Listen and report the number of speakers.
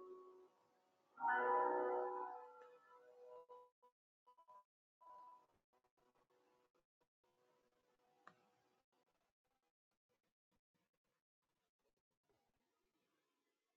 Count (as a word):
zero